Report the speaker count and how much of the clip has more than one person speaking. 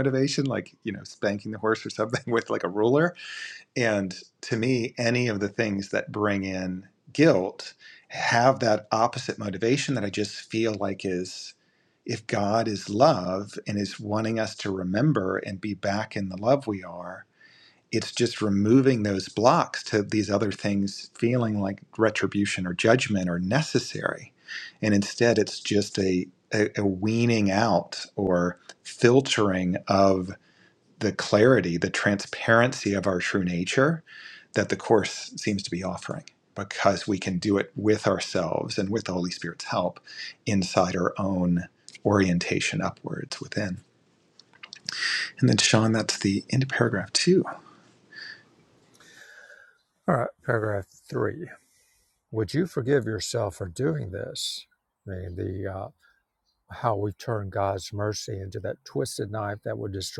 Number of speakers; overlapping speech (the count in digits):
2, no overlap